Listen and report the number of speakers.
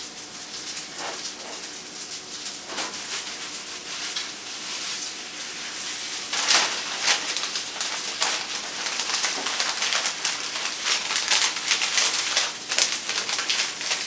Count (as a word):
zero